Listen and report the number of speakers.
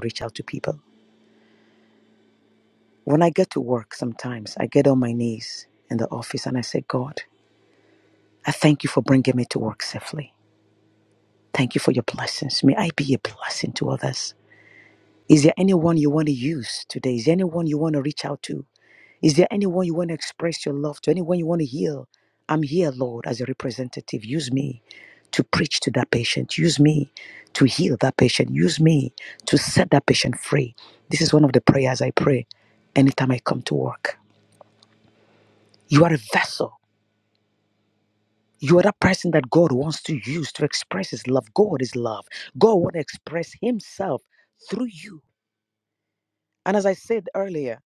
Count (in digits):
1